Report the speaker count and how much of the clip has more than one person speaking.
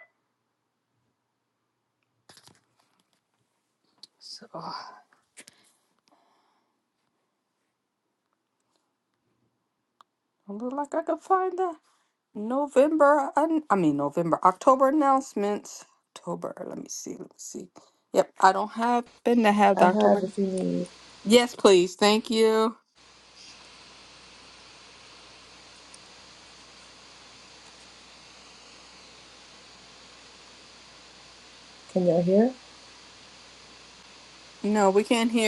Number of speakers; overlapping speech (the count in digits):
2, about 1%